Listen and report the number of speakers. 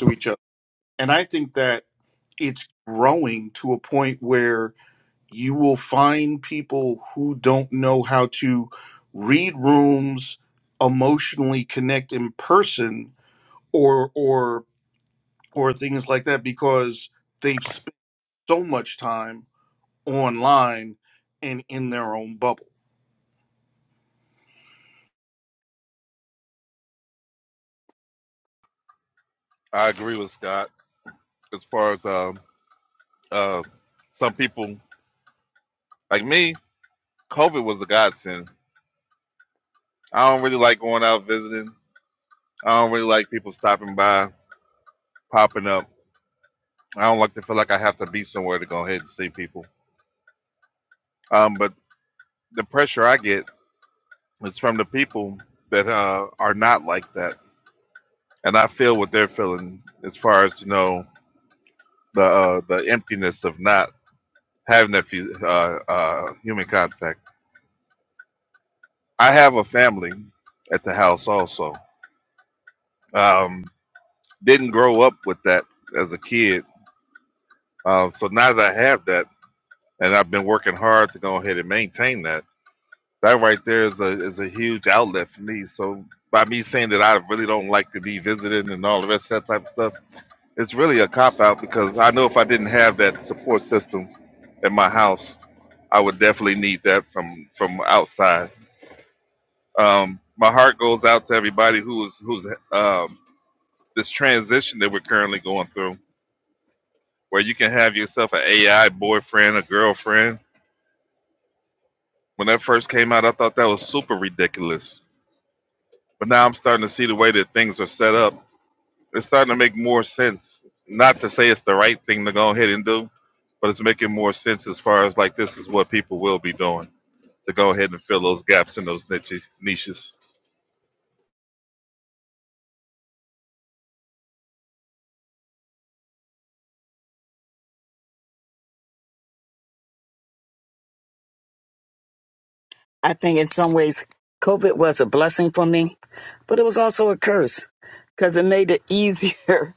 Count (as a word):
three